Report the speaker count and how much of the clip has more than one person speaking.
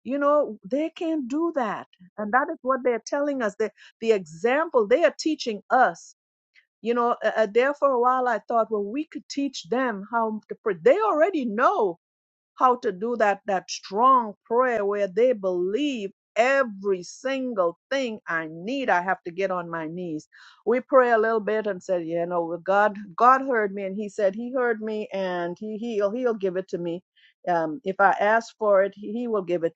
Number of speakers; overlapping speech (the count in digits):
1, no overlap